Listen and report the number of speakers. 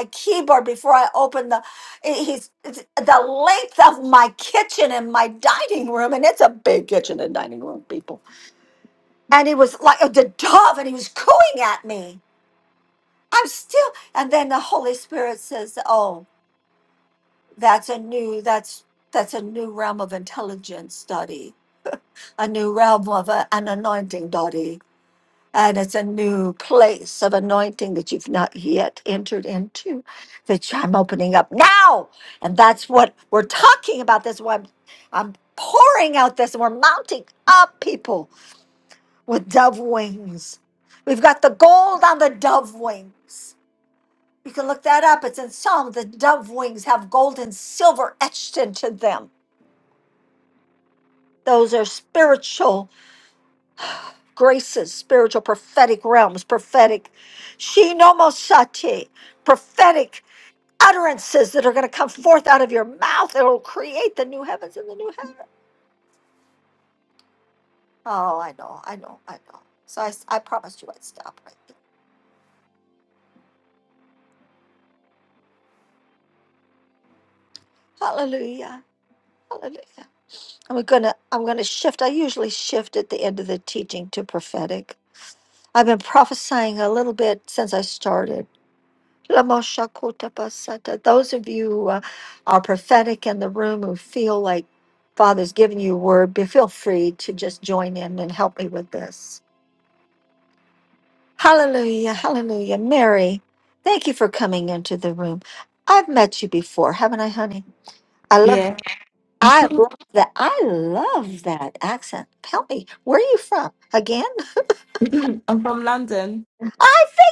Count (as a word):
two